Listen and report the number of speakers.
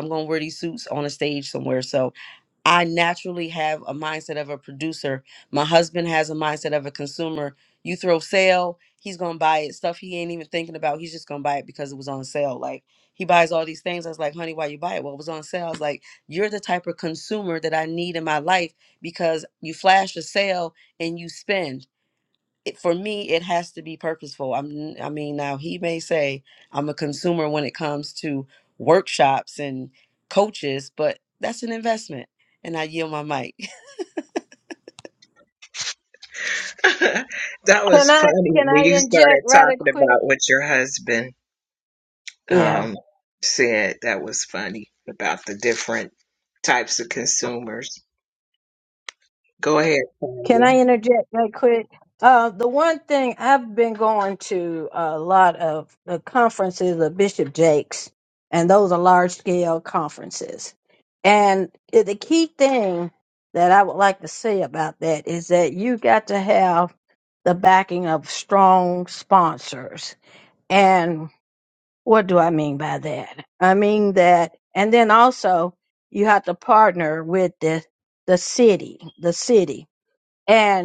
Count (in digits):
3